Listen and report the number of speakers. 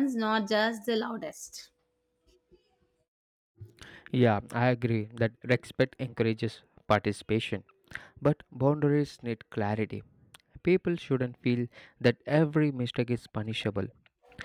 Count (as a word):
two